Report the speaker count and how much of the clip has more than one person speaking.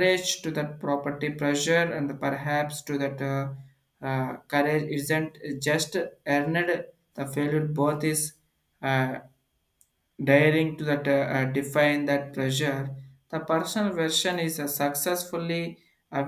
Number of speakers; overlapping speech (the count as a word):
one, no overlap